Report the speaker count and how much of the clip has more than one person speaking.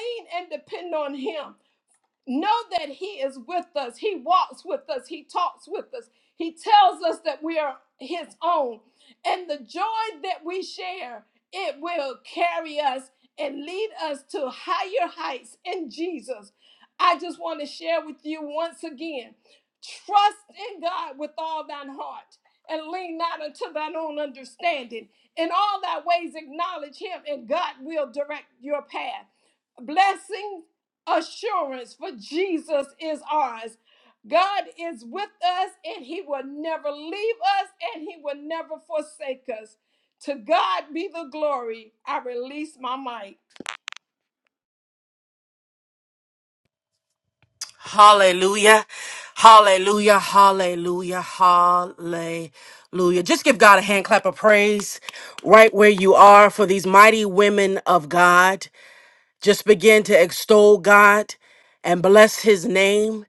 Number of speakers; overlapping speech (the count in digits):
2, no overlap